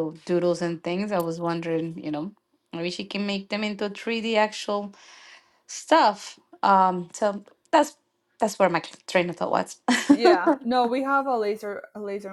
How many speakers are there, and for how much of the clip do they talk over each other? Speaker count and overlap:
2, no overlap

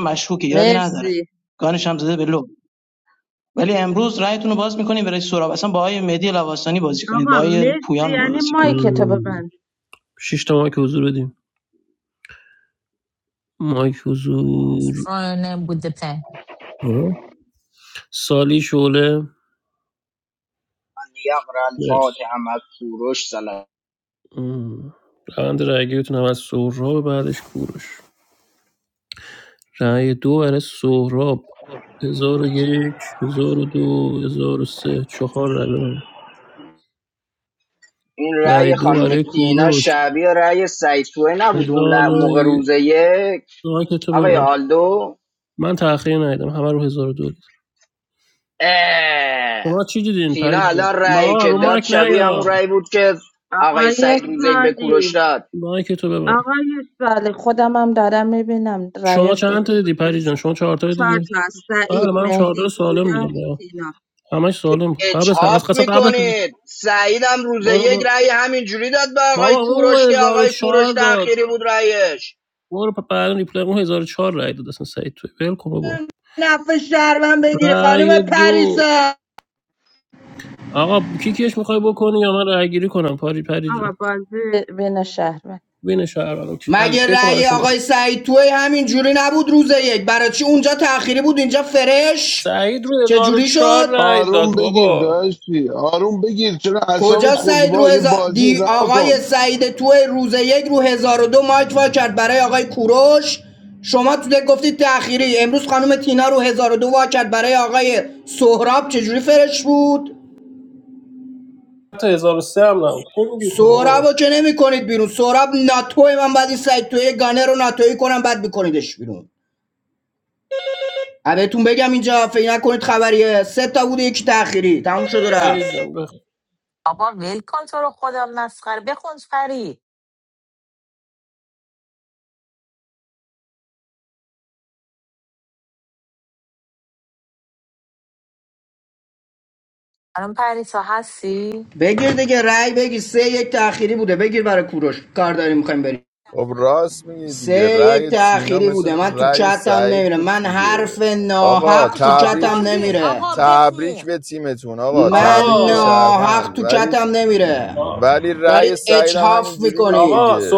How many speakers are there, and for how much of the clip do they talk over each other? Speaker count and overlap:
7, about 22%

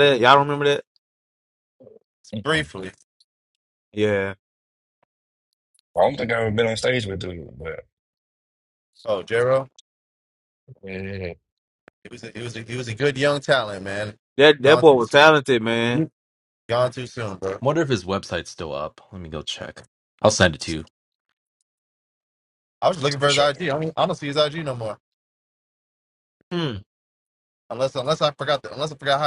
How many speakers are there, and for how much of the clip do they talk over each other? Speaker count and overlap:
4, about 3%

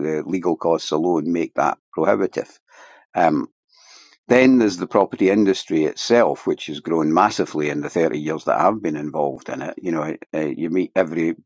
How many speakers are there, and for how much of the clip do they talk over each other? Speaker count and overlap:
1, no overlap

